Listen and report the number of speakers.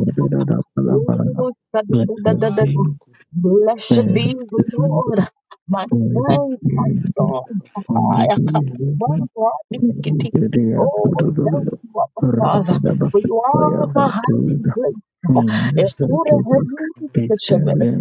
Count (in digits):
2